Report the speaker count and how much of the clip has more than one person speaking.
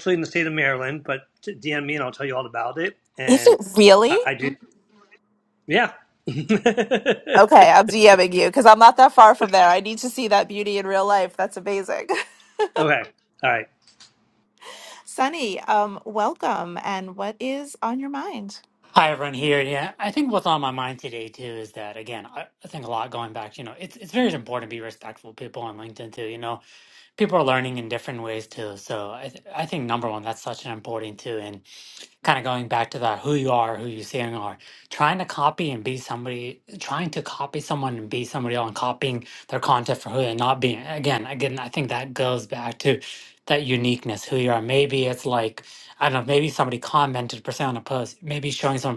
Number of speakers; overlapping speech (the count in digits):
3, about 1%